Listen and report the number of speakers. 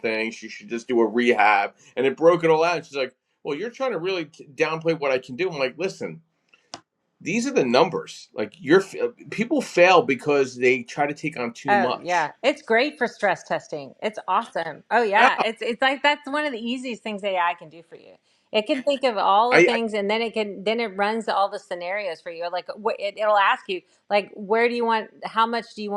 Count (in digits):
2